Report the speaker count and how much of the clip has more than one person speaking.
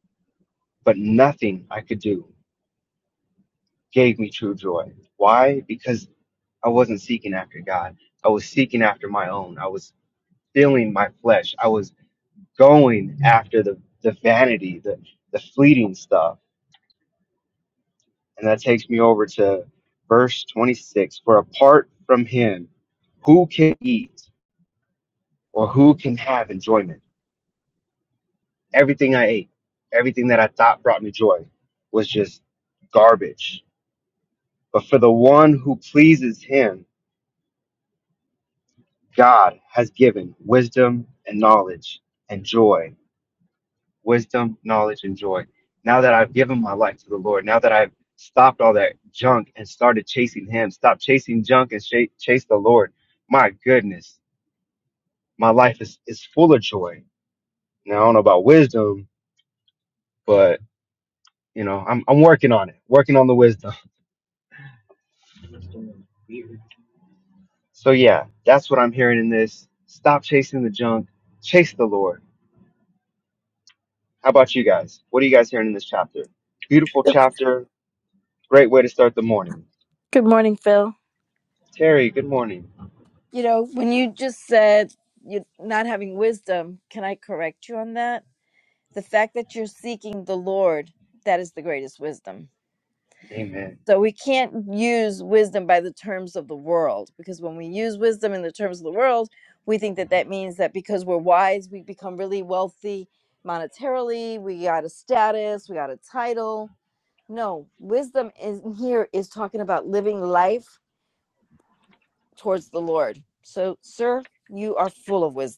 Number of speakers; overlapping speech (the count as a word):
two, no overlap